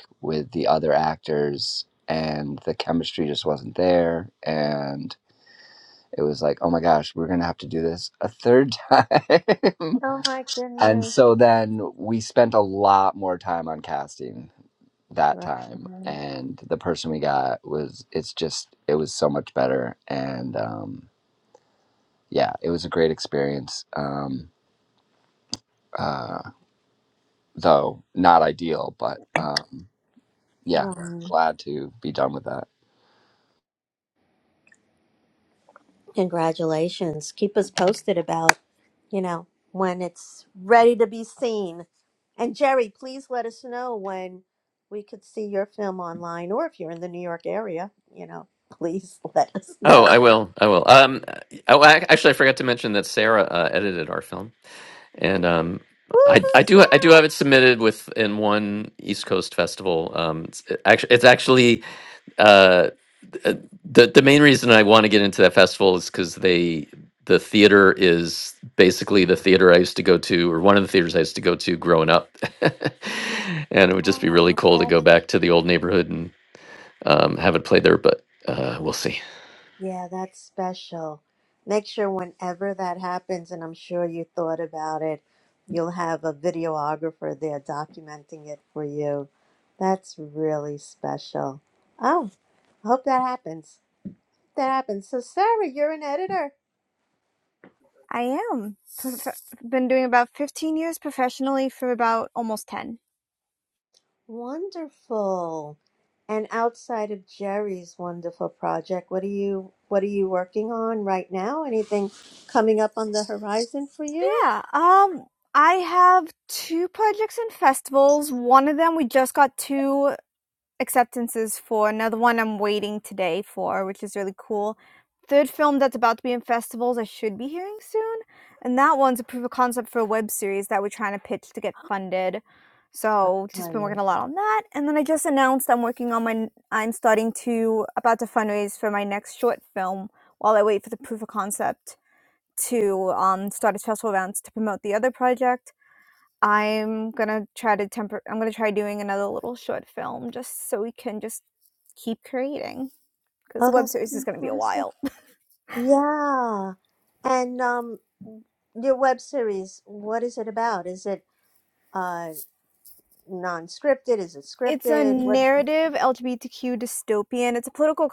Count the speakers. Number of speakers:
four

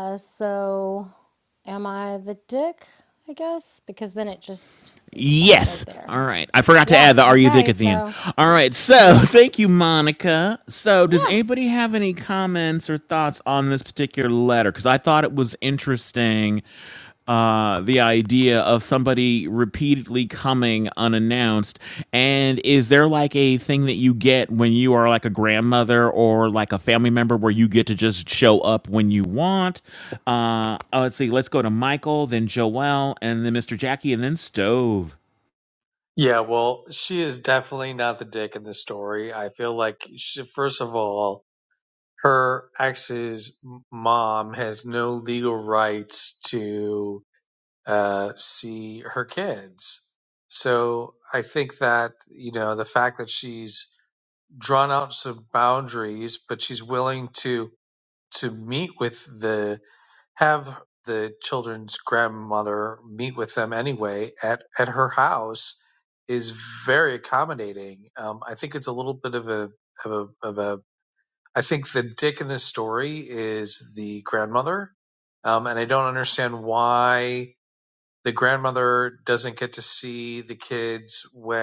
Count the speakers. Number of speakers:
three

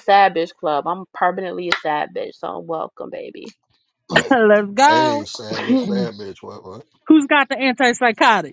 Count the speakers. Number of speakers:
three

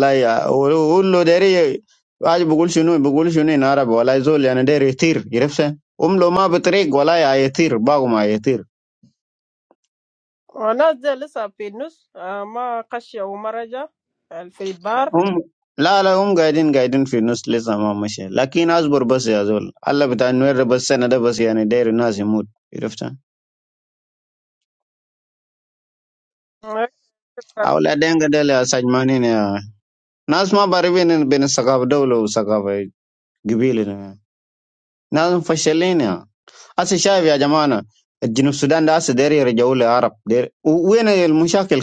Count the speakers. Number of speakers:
two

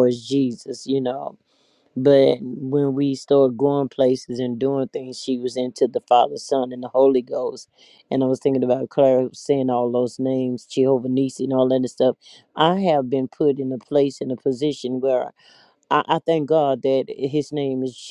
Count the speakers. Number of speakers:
one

